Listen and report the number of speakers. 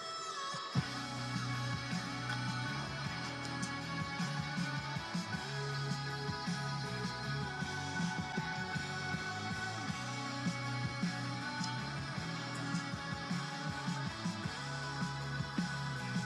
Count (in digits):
0